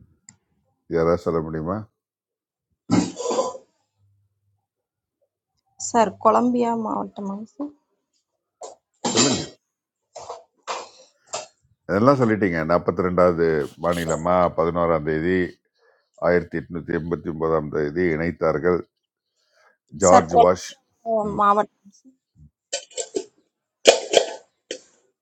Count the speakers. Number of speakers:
2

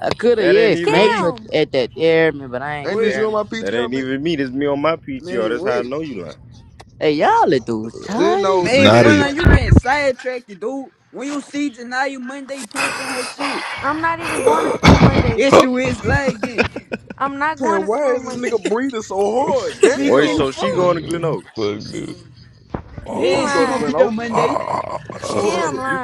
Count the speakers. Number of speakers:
6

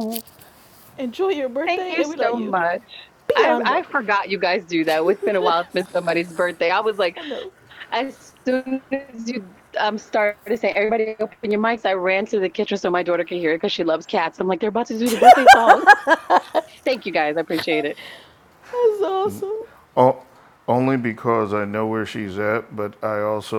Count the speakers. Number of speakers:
3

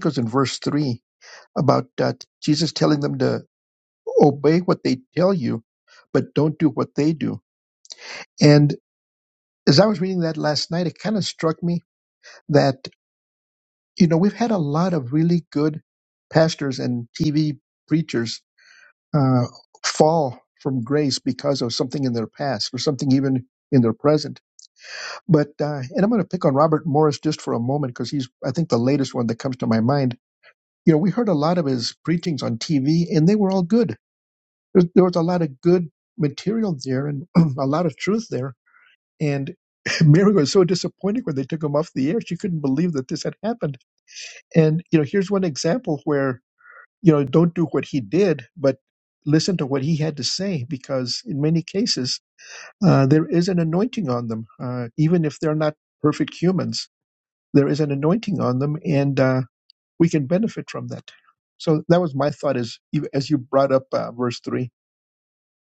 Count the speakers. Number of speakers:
1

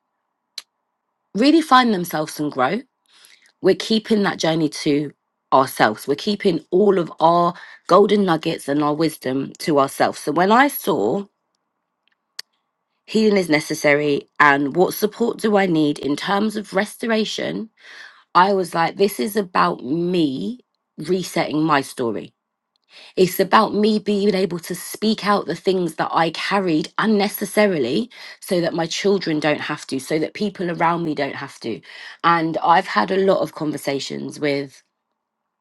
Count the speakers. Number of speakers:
1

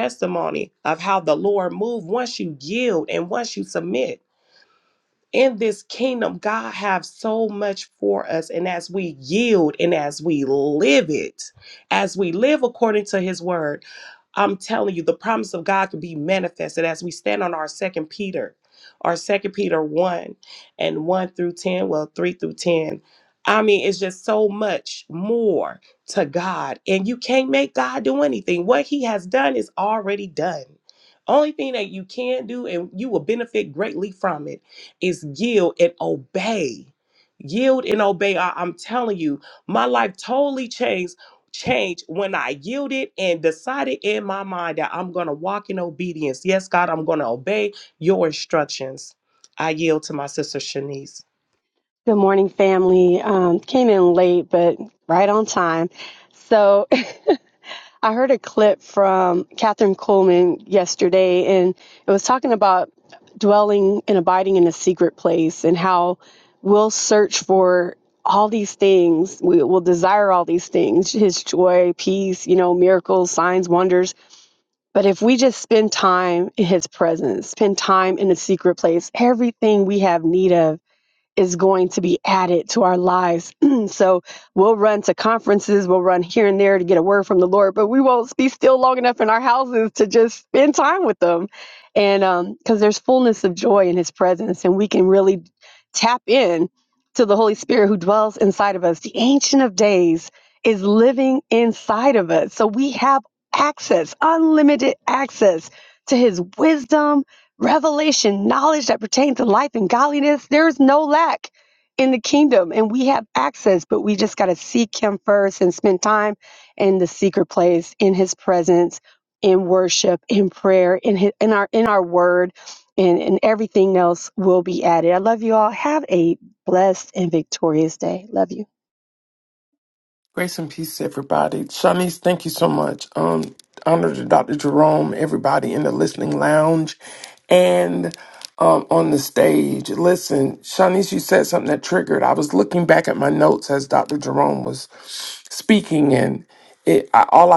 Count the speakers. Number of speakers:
3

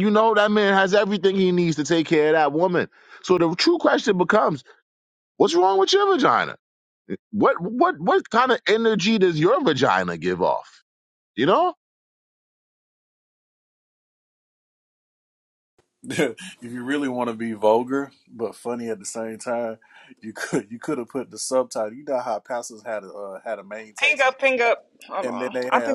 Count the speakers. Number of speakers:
3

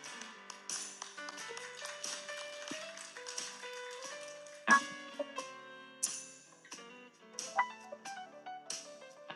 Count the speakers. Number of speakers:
0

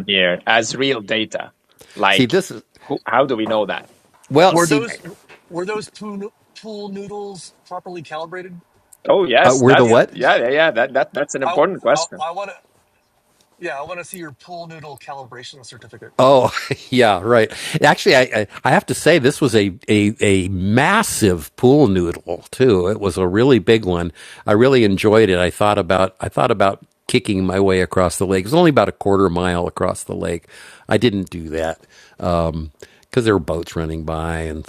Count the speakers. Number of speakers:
3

